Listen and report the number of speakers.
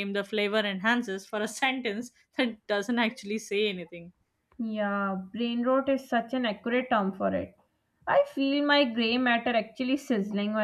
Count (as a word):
two